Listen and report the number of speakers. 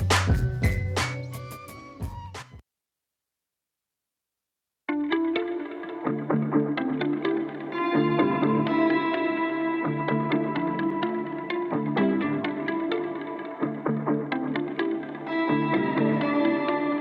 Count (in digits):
0